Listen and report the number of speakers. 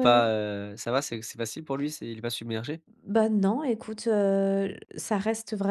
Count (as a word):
two